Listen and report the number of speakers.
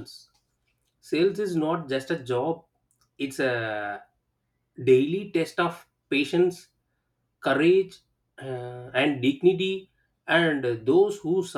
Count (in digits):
1